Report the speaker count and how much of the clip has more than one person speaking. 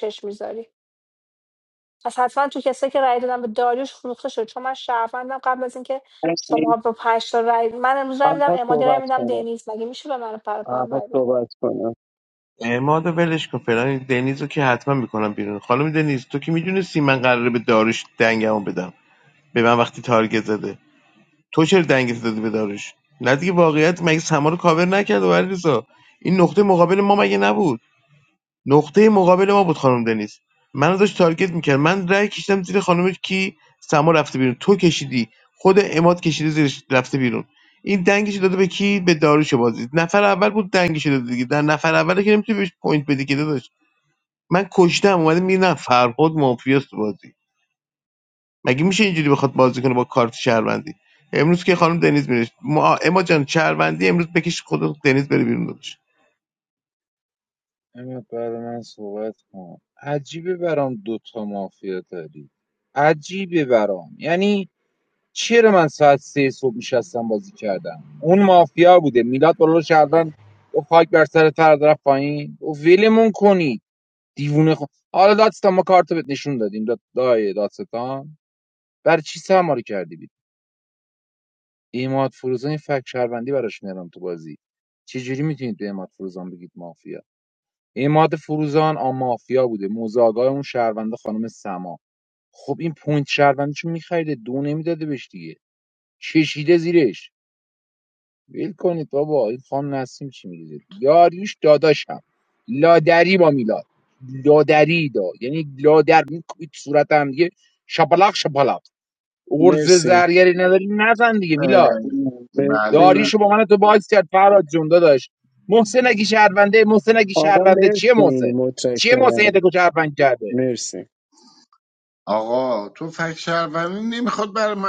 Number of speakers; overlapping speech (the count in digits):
5, about 4%